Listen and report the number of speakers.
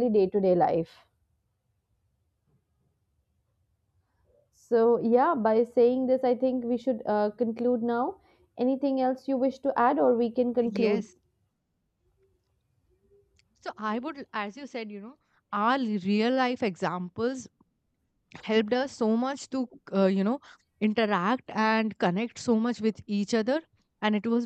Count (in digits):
2